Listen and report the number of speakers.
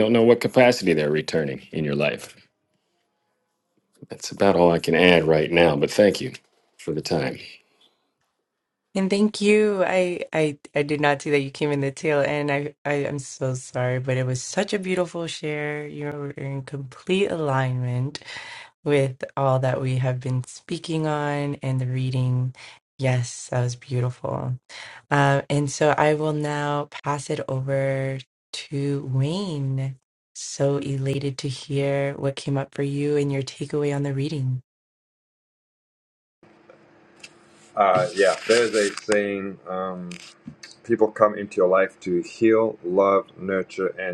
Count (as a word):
three